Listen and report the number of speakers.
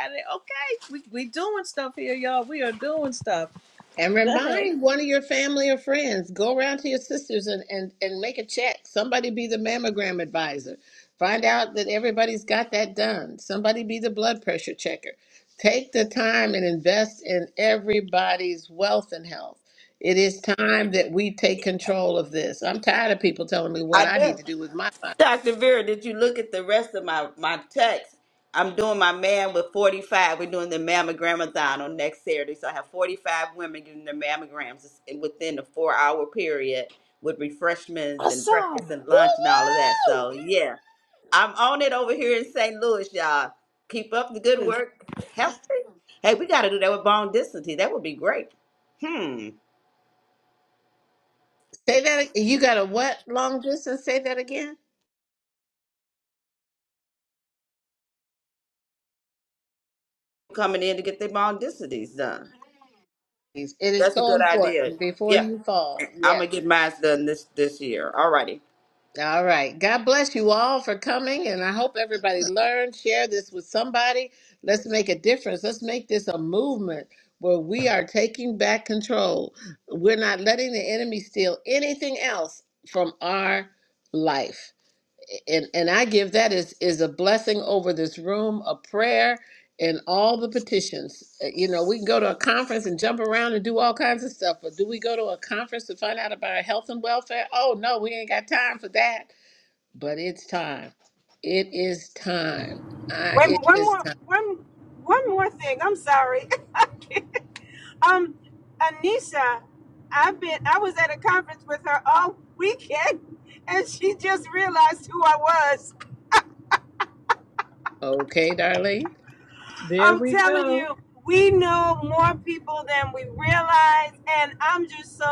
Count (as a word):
four